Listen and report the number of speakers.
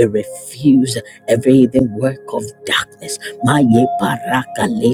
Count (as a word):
one